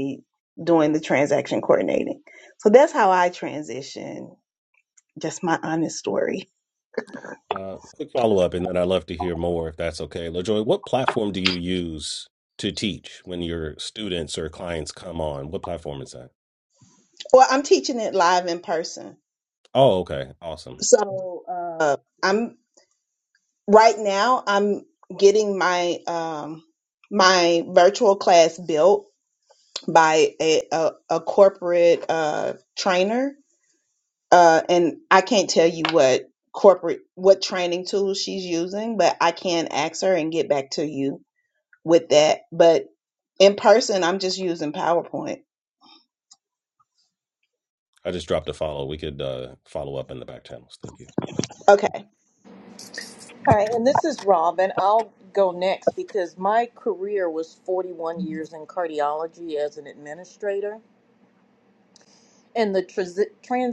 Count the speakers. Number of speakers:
3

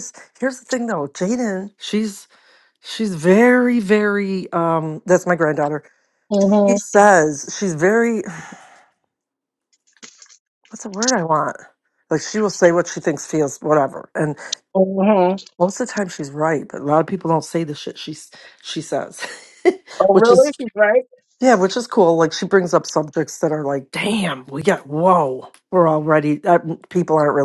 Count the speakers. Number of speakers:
2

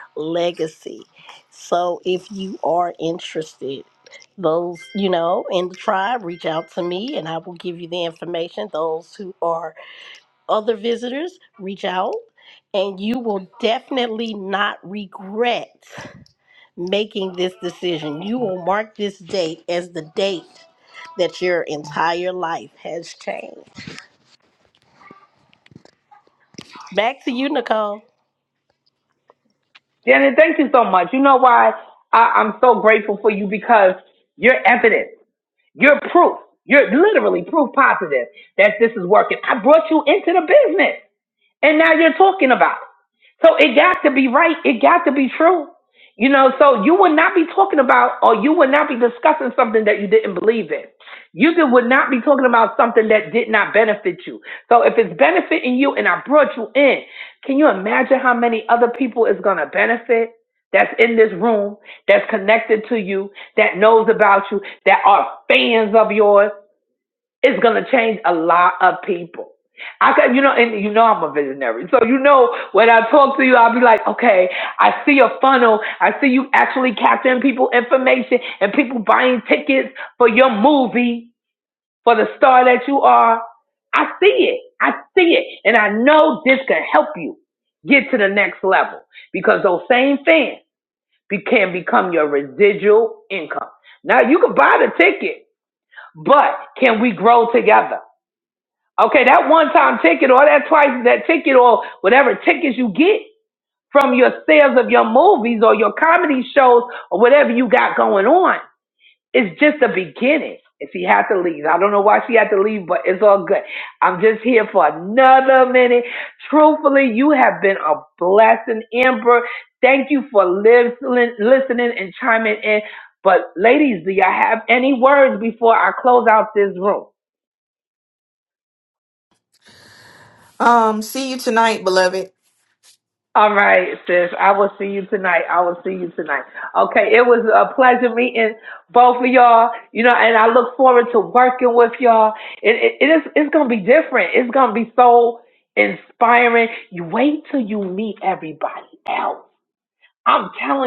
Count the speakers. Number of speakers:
3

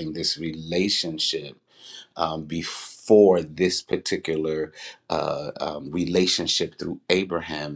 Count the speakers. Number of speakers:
1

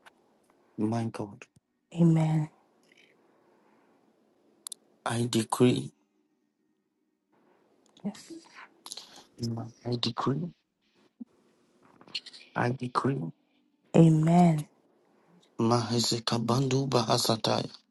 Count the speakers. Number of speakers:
2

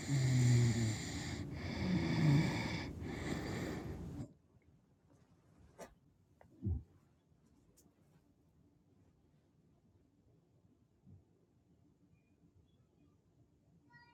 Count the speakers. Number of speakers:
0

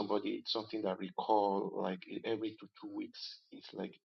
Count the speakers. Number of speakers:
1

